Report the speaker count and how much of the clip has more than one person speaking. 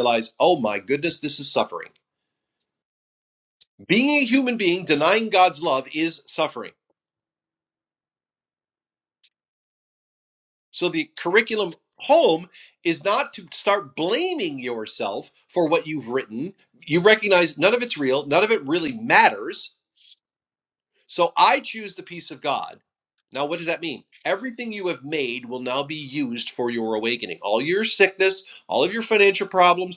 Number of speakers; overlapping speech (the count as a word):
one, no overlap